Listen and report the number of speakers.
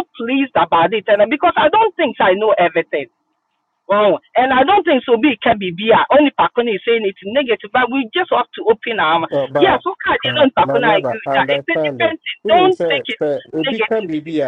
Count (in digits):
2